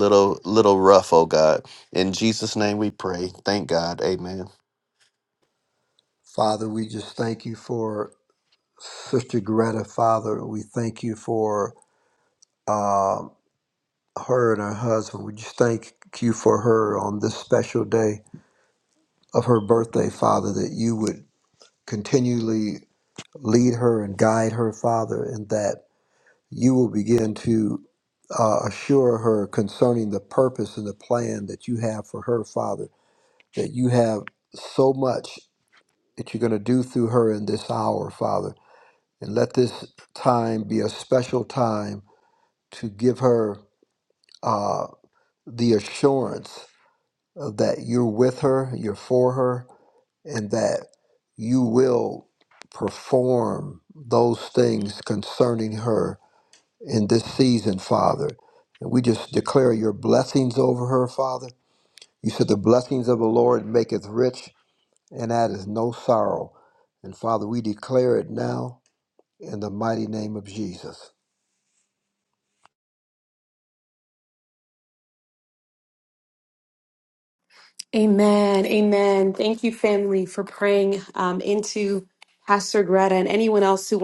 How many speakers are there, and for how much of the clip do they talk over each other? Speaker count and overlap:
3, no overlap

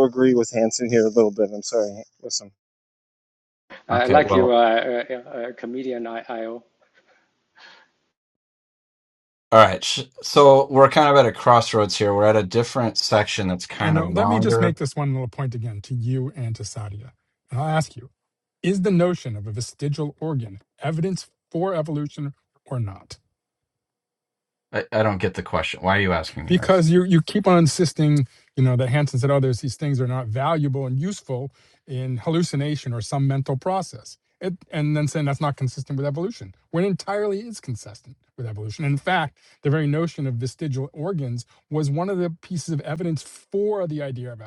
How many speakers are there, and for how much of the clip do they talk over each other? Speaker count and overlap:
4, about 4%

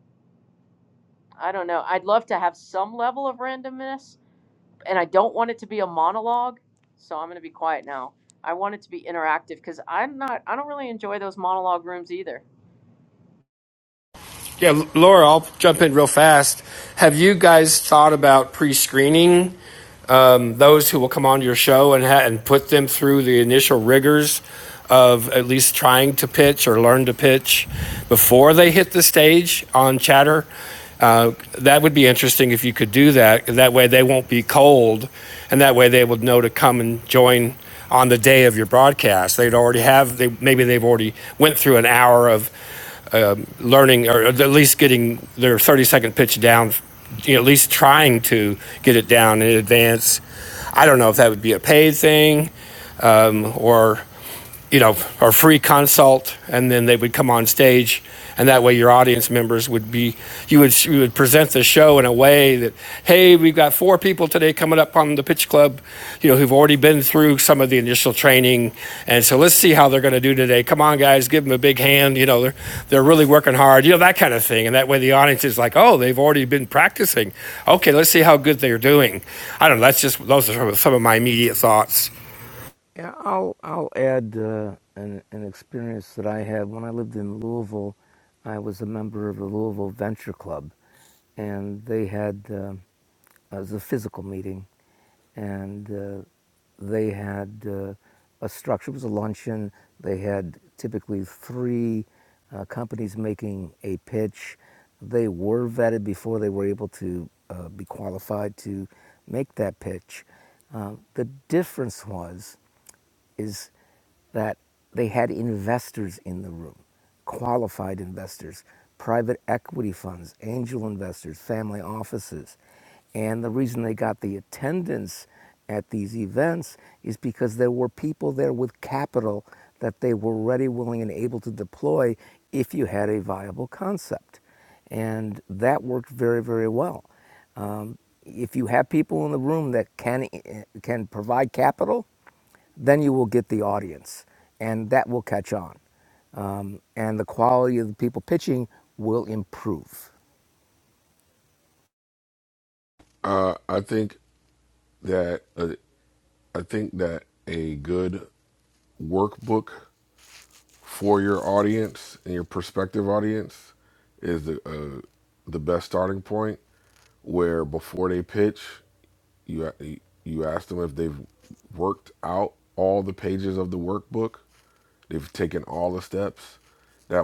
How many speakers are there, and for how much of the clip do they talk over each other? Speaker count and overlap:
4, no overlap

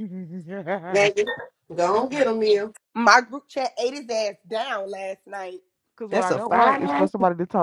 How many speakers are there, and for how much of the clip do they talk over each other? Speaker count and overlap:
3, about 13%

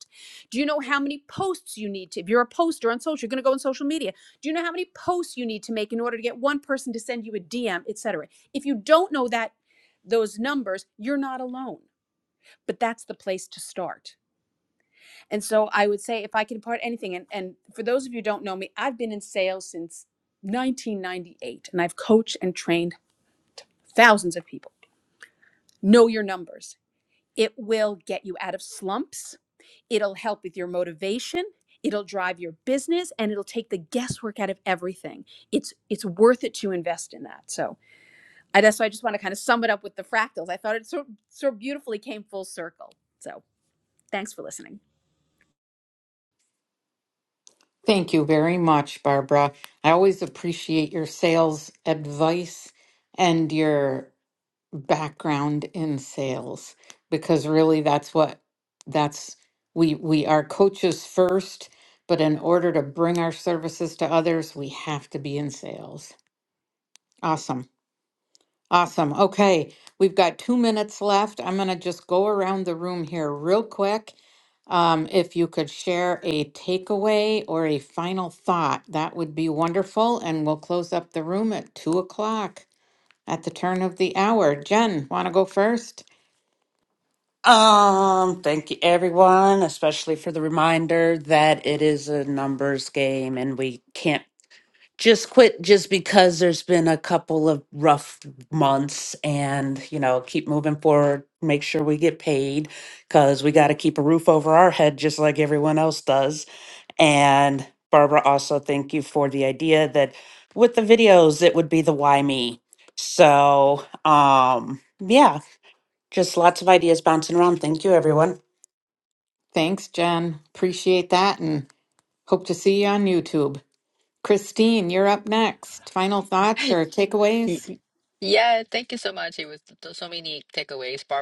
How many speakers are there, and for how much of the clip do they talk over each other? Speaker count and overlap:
4, under 1%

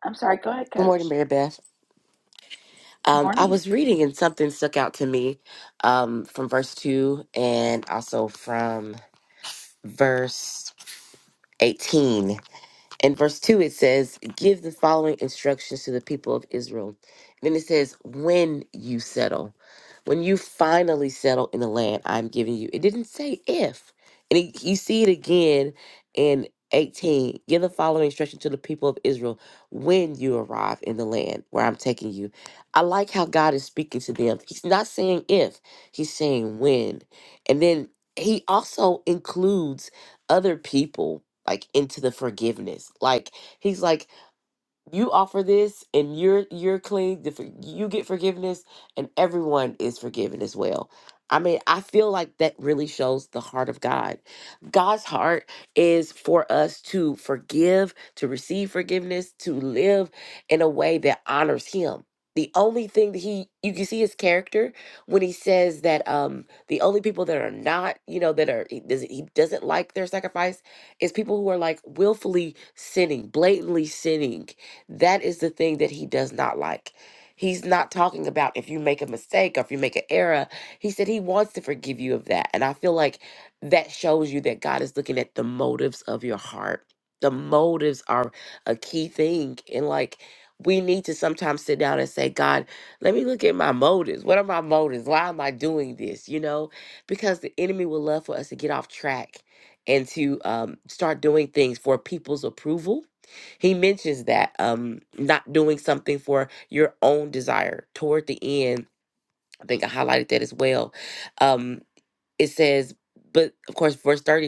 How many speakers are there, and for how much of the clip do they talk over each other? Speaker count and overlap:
2, about 1%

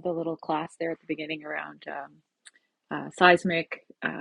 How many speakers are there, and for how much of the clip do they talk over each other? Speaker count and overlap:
1, no overlap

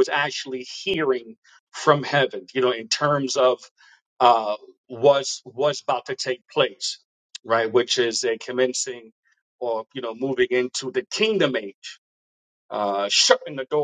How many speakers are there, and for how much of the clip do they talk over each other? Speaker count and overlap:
1, no overlap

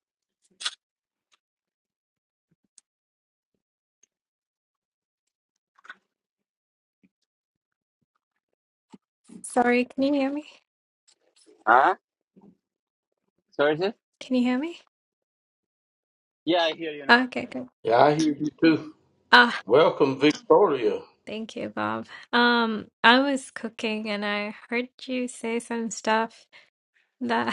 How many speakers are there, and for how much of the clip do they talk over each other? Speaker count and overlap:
3, about 1%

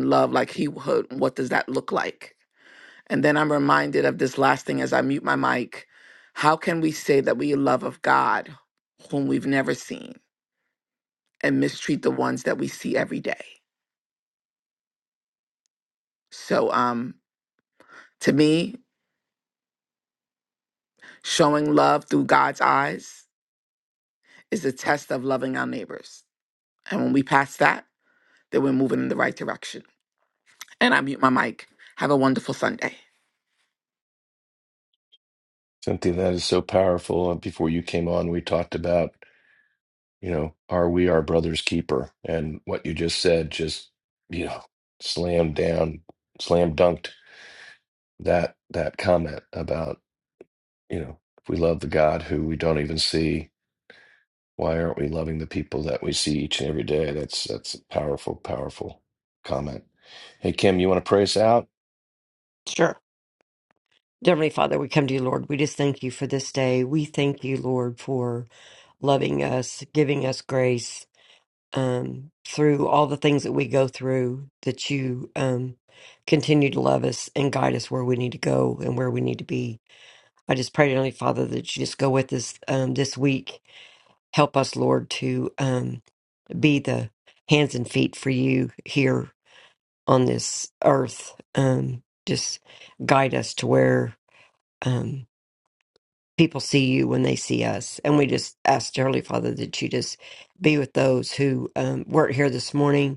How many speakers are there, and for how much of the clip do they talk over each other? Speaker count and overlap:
3, no overlap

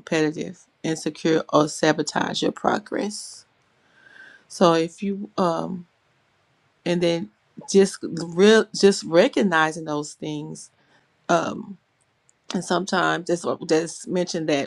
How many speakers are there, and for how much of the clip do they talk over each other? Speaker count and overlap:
1, no overlap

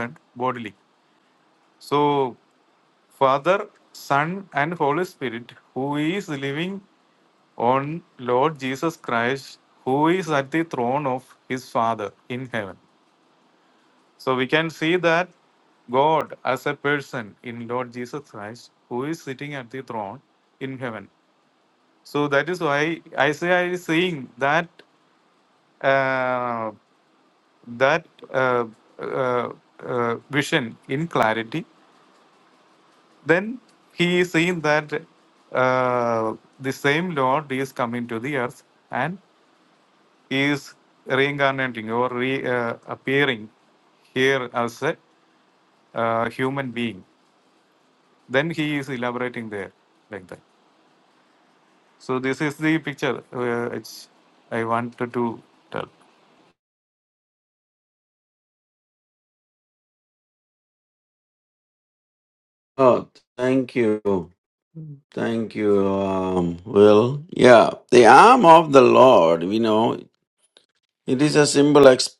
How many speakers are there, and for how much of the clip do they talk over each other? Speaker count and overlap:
2, no overlap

